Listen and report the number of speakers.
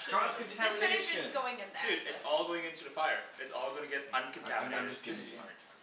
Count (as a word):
three